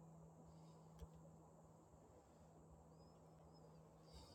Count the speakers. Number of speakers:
0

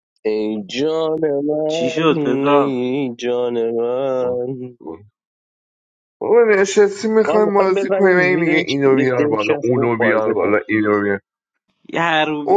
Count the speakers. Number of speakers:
3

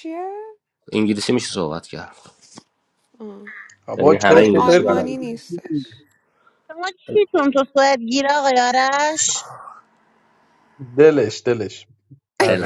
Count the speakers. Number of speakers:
4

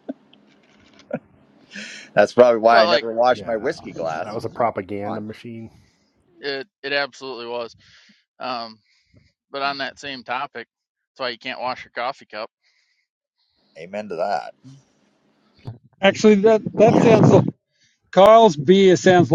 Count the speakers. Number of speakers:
4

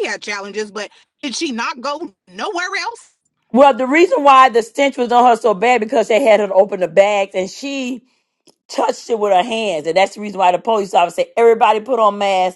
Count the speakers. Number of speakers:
2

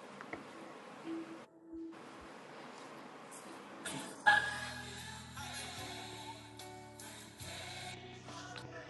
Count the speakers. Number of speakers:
0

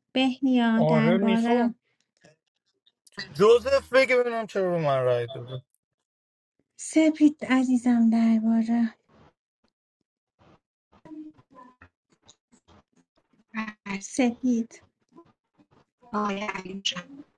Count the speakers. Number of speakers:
3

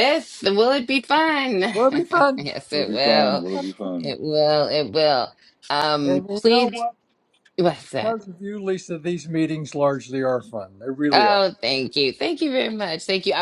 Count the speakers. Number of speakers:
3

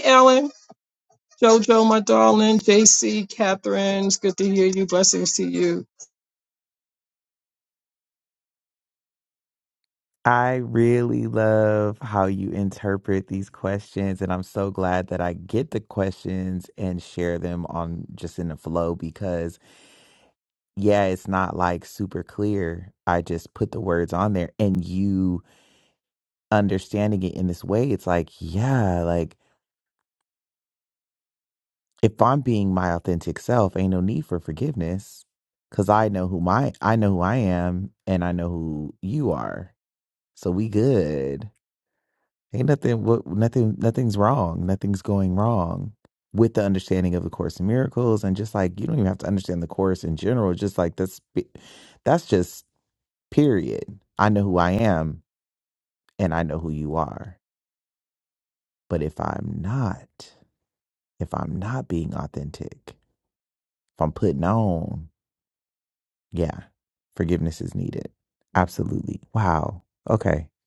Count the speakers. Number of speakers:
2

